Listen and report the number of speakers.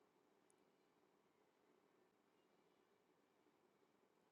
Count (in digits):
0